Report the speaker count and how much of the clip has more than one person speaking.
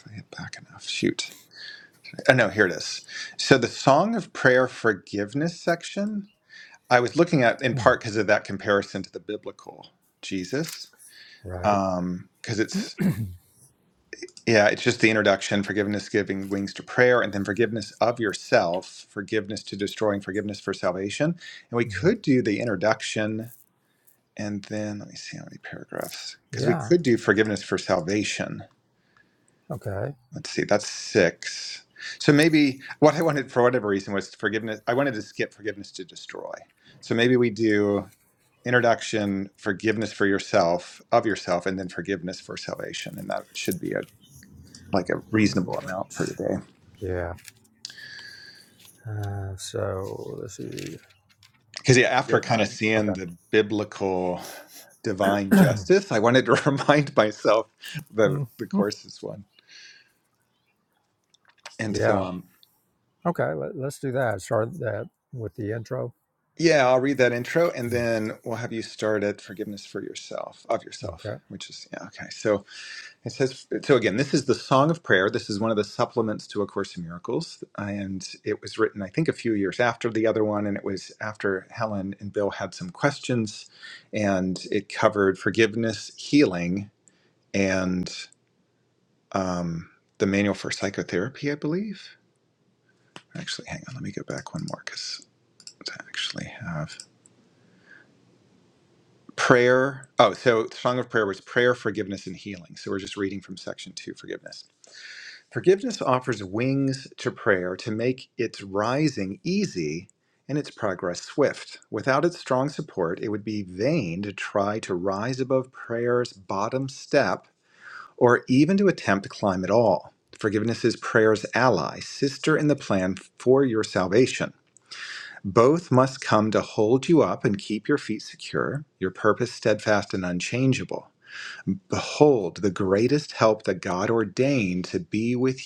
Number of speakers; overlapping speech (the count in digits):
2, about 3%